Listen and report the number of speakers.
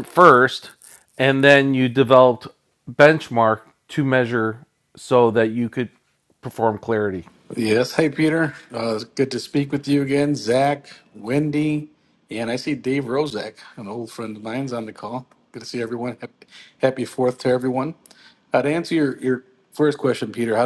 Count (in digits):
2